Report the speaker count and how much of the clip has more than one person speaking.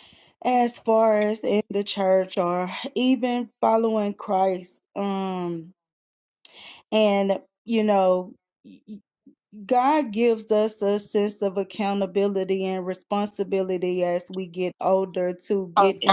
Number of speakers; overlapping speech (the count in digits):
1, no overlap